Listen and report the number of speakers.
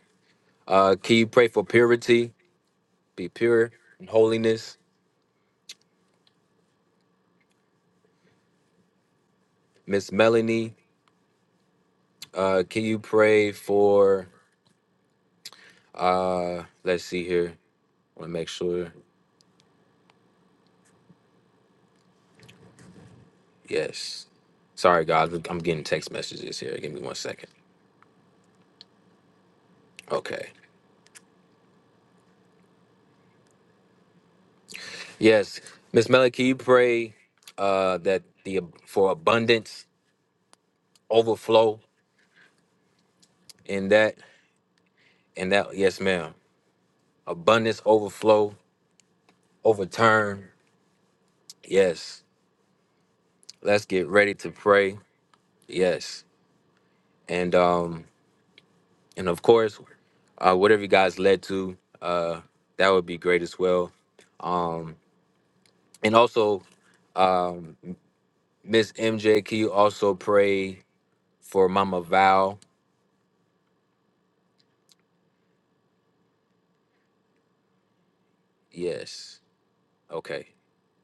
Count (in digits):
1